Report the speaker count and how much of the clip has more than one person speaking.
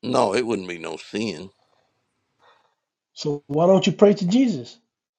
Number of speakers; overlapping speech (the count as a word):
two, no overlap